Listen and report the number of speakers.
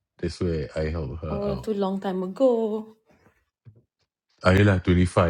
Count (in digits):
2